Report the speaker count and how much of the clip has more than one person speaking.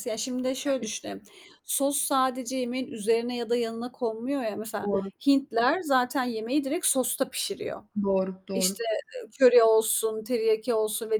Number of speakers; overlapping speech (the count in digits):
2, about 4%